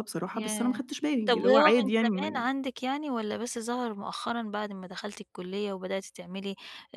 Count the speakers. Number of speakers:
2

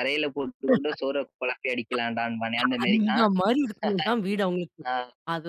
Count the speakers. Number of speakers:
2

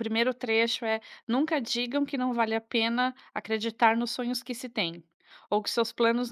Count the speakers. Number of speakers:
1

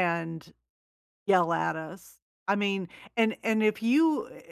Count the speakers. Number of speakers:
1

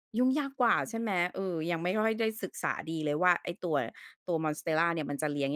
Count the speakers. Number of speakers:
1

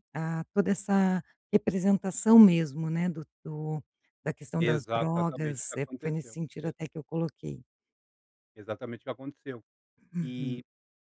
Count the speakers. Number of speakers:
2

